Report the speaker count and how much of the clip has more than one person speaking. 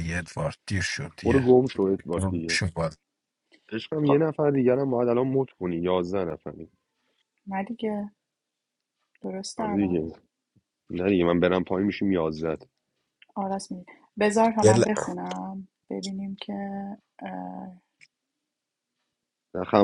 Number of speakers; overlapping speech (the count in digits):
3, about 9%